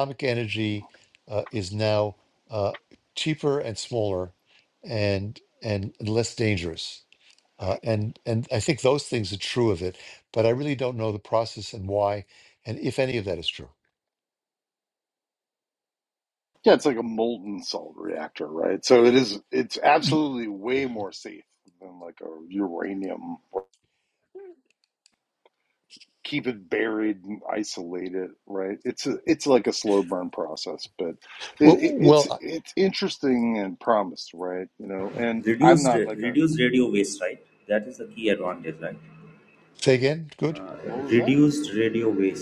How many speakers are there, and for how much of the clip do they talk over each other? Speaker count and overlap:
three, about 6%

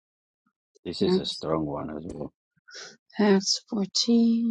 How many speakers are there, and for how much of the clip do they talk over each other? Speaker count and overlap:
two, about 4%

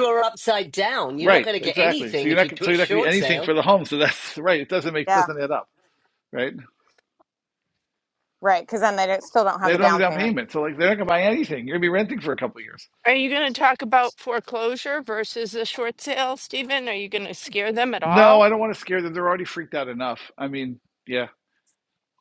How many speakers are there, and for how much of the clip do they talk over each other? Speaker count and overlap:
four, about 16%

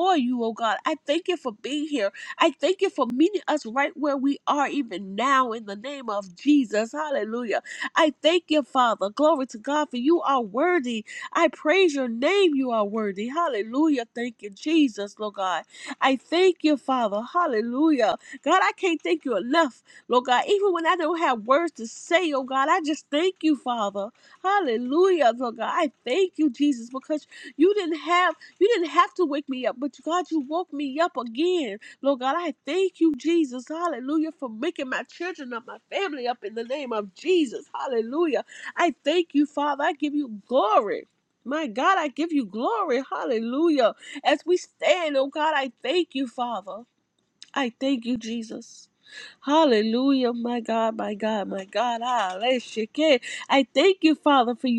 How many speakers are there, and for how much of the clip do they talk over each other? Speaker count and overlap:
one, no overlap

